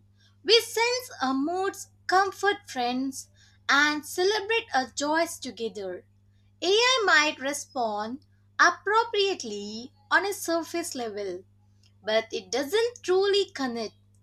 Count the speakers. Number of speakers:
1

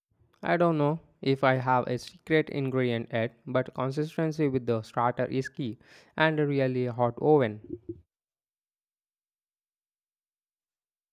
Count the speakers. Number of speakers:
1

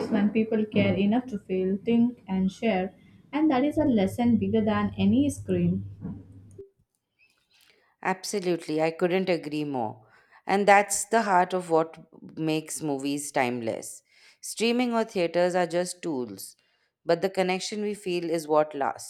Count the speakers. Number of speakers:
2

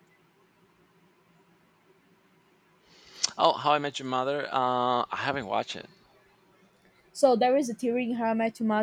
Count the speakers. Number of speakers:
2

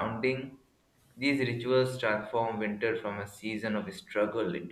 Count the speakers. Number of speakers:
1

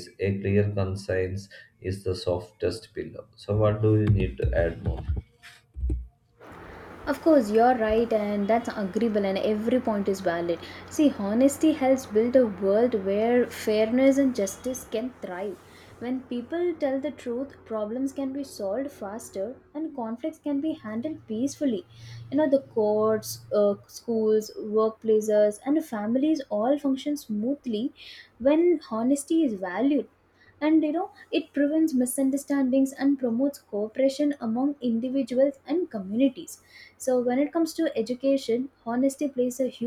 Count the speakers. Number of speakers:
2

